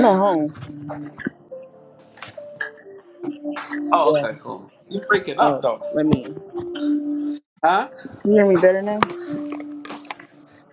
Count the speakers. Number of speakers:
2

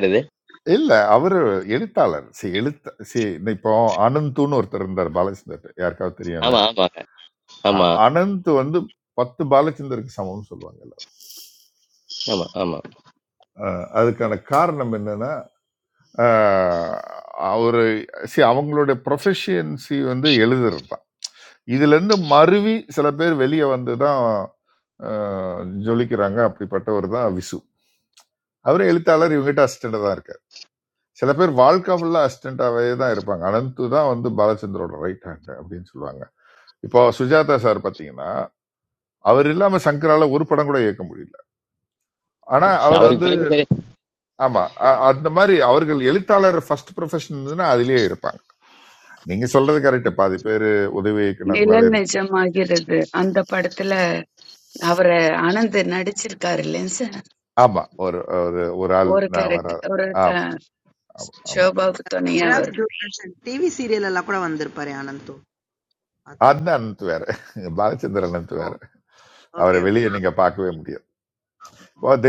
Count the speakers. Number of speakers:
4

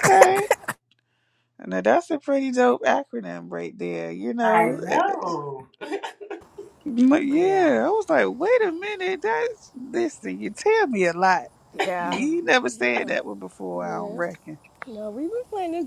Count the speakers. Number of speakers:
3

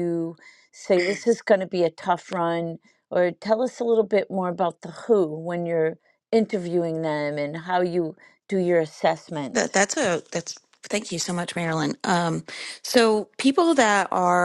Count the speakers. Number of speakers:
2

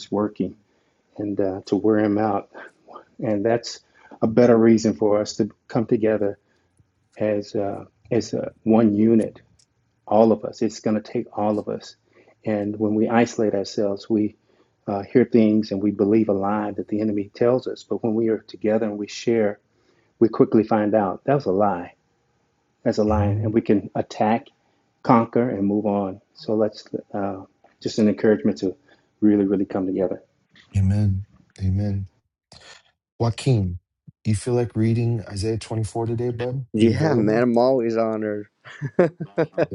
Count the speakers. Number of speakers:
3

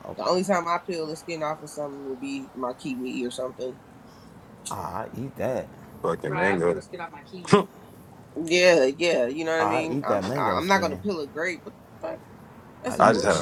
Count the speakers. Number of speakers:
3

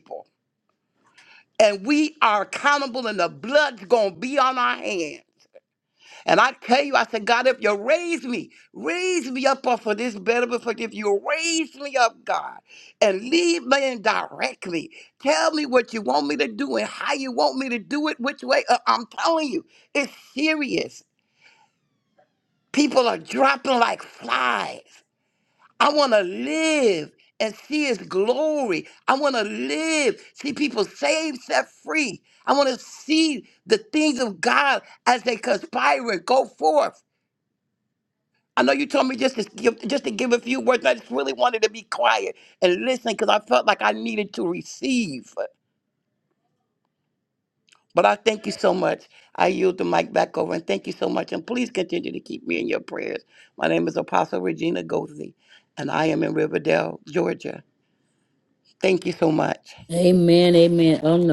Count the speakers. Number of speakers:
2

